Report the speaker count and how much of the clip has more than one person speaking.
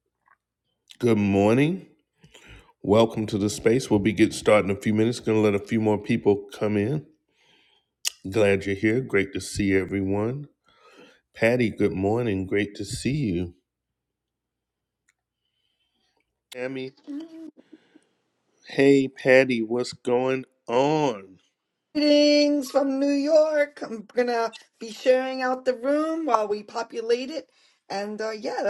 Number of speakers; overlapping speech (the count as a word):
two, no overlap